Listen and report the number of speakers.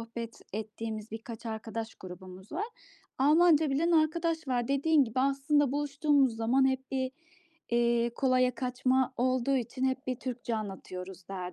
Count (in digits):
1